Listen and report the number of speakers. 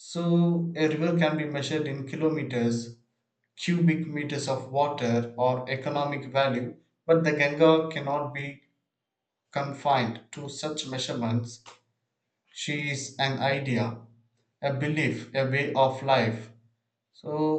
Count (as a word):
one